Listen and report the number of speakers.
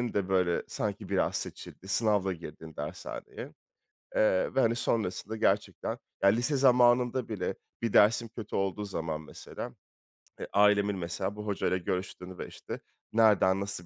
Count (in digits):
1